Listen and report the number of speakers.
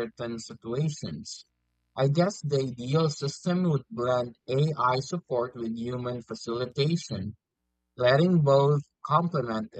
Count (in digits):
1